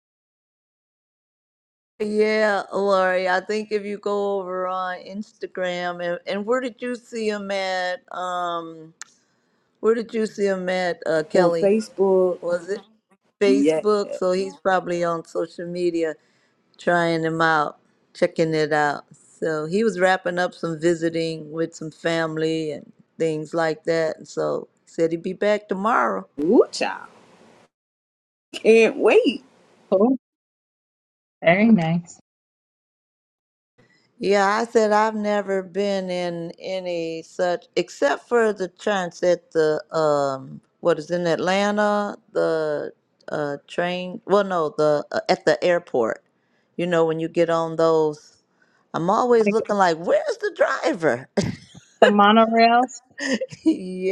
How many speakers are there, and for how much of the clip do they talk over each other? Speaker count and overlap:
3, about 2%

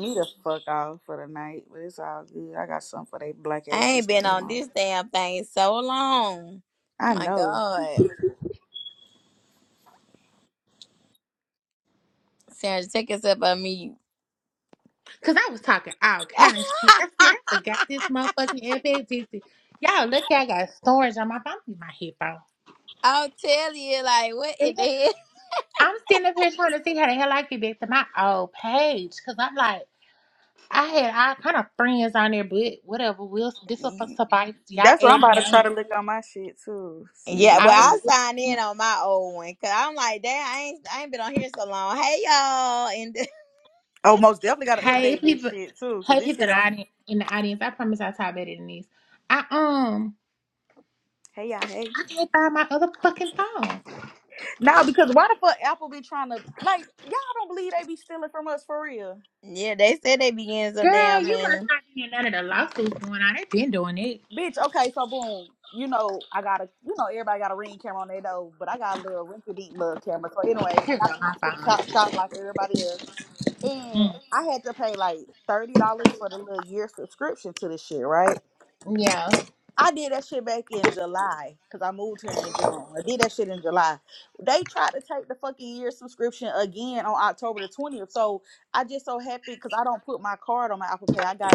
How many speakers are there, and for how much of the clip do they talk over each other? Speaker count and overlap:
3, about 7%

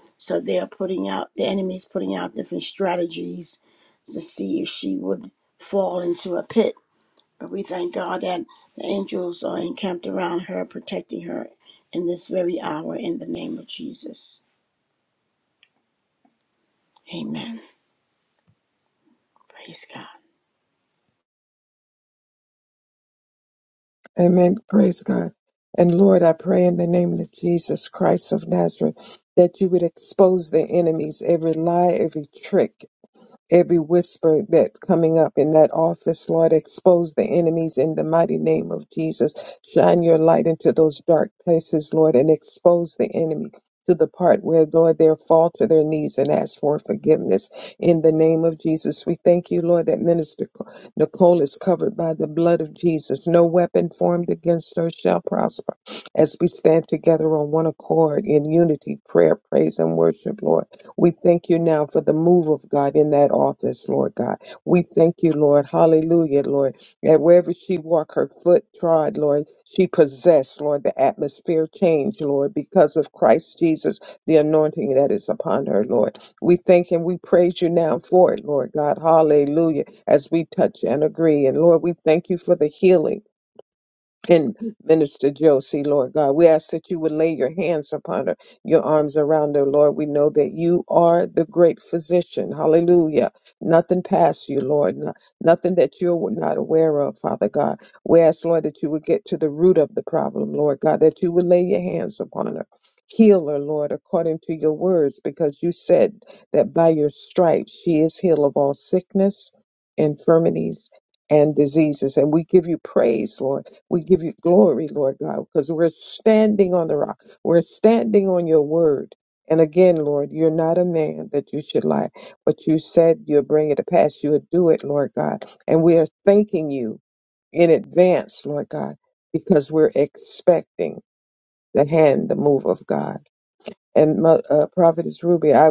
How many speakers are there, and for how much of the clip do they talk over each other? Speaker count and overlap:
2, no overlap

